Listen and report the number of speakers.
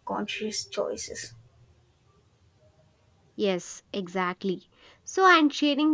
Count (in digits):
2